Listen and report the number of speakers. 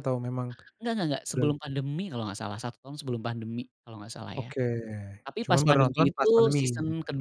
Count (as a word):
two